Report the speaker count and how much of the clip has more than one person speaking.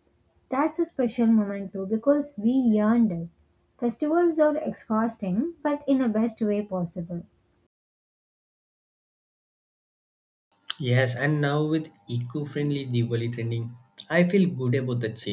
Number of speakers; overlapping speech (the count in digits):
2, no overlap